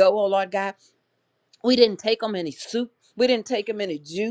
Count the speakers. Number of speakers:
1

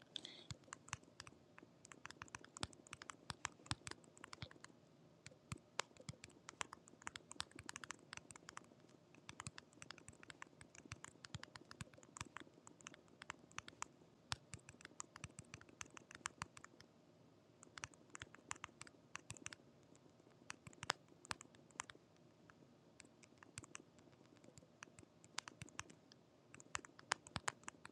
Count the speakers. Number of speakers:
0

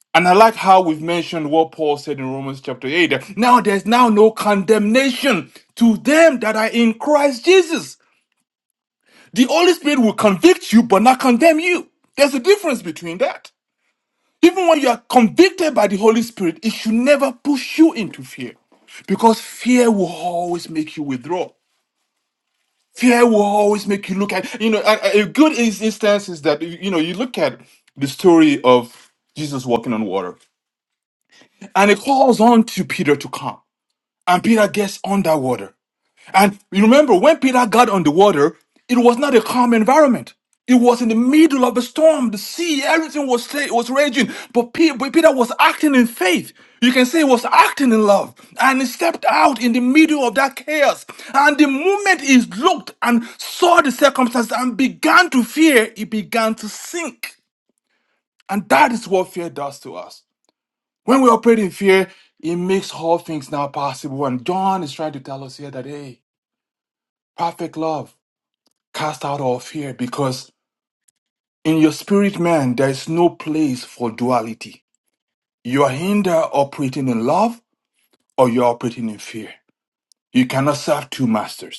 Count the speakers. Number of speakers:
1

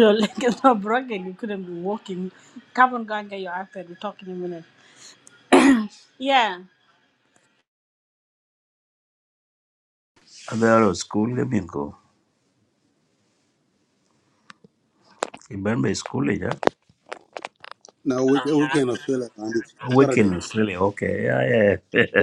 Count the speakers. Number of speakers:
3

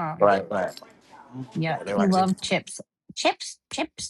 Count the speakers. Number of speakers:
2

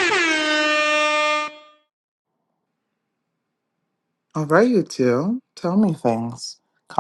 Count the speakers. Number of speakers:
1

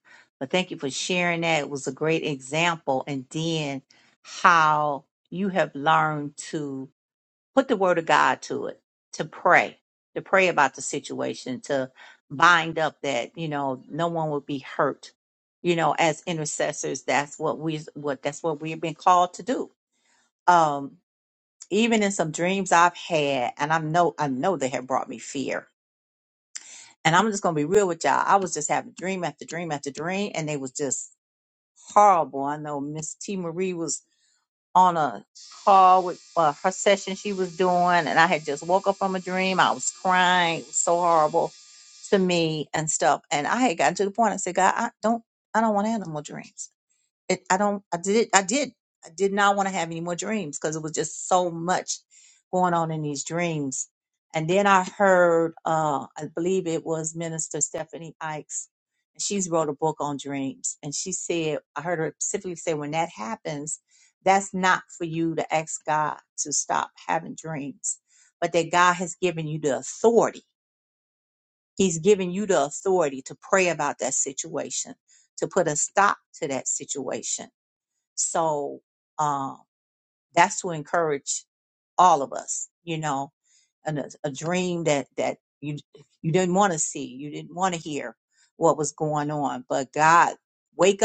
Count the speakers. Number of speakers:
1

